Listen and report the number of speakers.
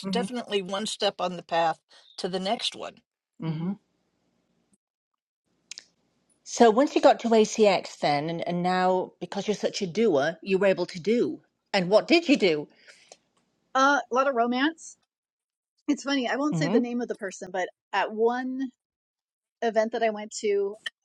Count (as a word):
three